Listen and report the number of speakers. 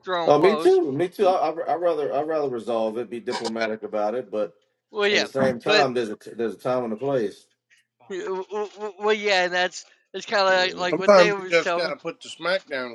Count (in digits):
3